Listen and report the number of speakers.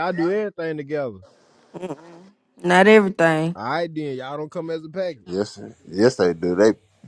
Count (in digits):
3